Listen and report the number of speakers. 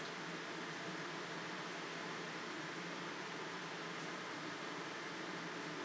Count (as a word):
zero